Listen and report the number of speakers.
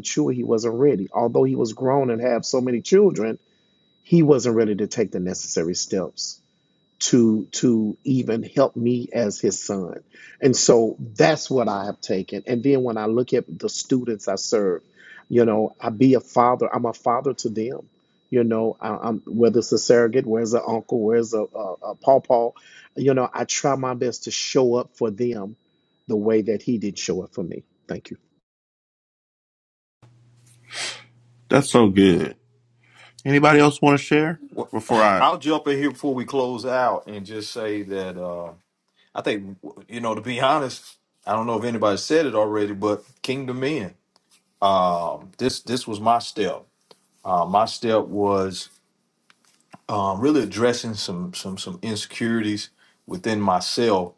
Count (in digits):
3